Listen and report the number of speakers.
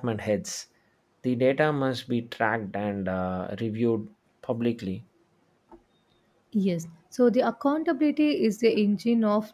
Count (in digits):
2